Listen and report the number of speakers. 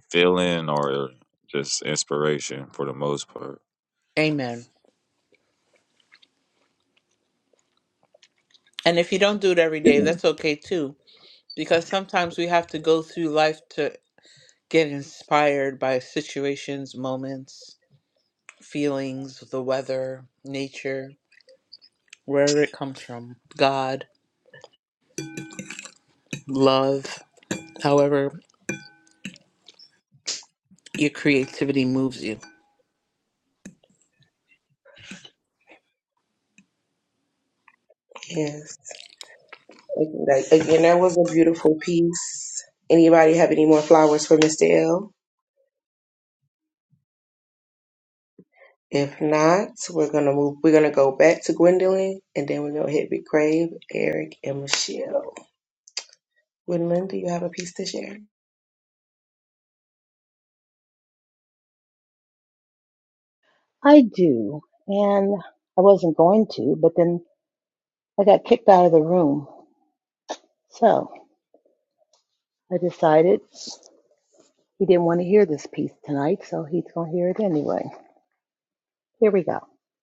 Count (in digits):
4